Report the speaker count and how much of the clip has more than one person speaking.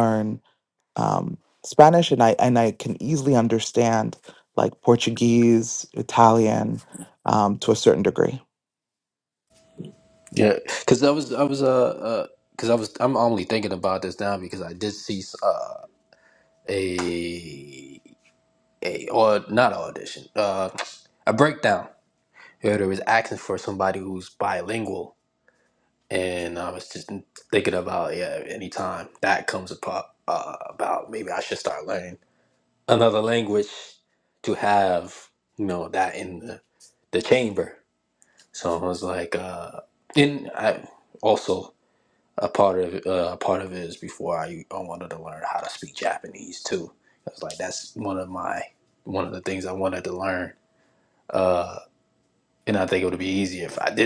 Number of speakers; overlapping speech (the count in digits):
2, no overlap